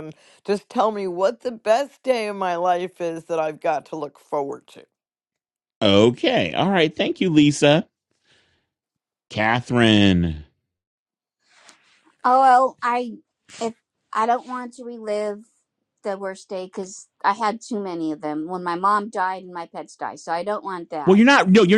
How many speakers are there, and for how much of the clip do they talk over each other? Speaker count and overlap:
three, about 1%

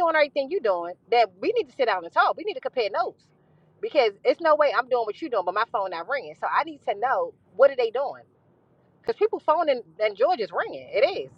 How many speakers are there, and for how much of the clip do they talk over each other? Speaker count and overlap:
one, no overlap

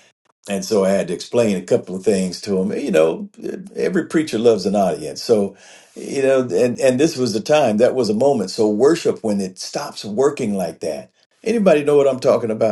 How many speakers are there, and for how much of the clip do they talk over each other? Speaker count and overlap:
one, no overlap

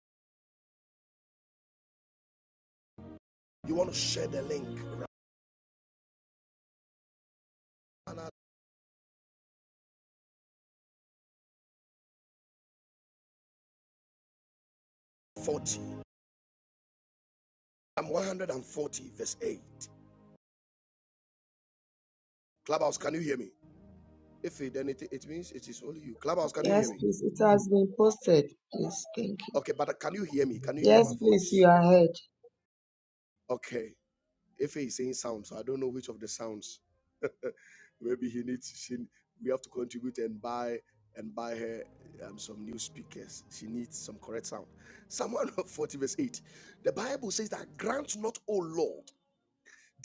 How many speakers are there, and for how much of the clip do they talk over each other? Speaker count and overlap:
two, about 2%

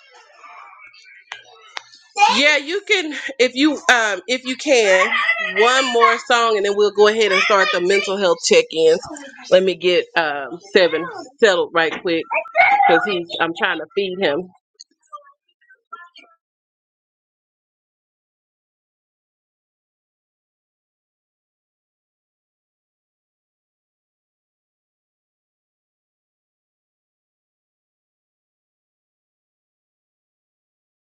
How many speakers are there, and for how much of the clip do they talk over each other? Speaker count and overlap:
one, no overlap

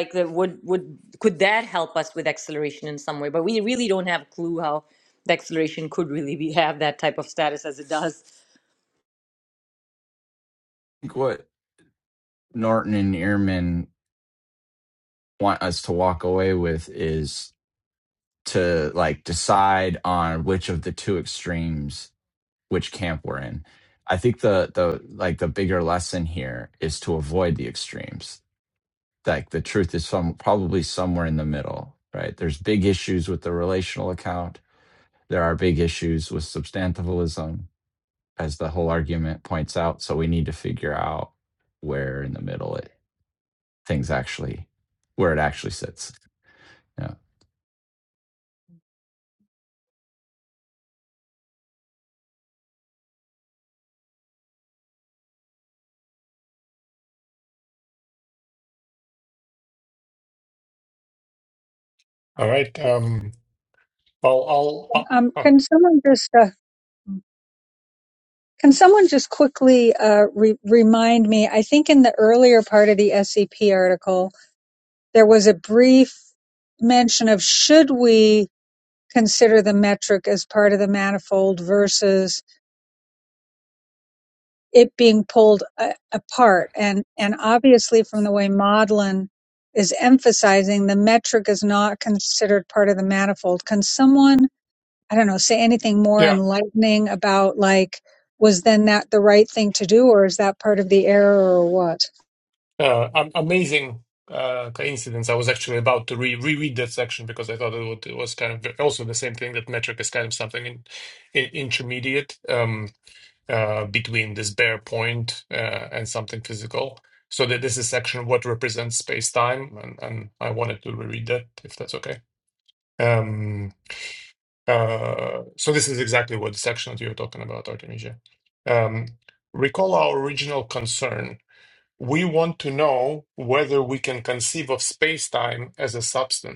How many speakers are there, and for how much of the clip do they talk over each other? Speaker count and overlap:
four, under 1%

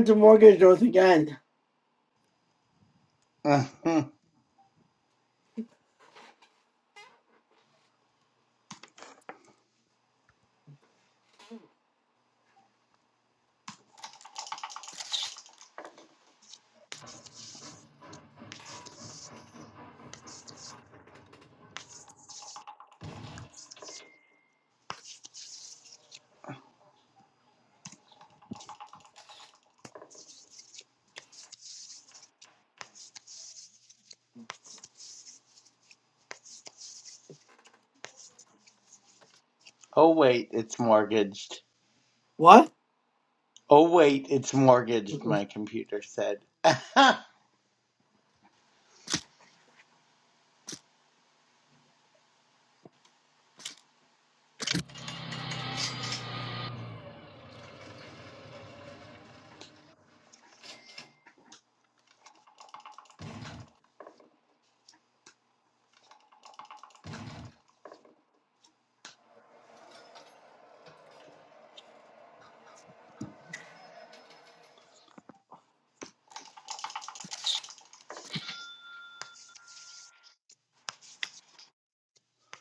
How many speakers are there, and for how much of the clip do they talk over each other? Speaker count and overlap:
two, no overlap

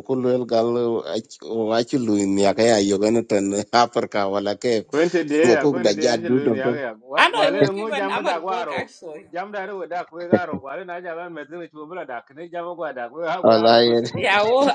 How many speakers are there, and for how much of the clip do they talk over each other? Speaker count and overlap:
three, about 24%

